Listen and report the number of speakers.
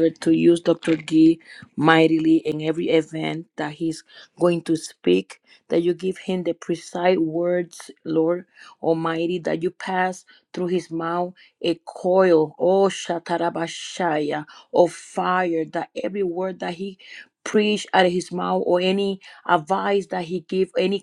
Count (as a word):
one